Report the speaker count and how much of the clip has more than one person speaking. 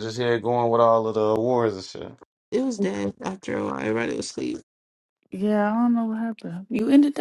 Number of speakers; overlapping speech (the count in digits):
3, no overlap